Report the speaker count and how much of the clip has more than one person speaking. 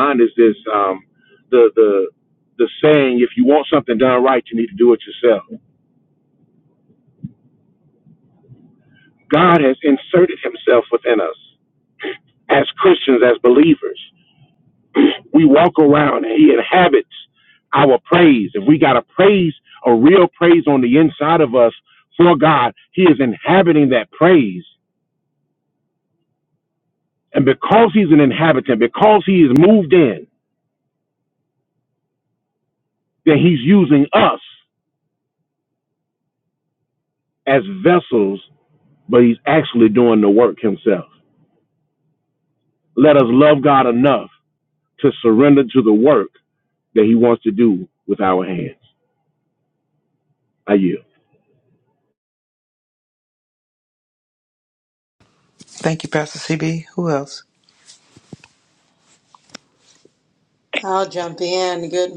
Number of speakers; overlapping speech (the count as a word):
three, no overlap